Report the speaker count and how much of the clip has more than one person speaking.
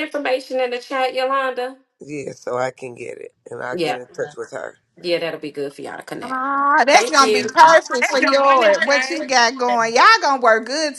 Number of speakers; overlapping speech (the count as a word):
three, about 20%